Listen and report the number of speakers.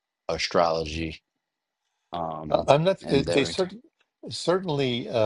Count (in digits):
2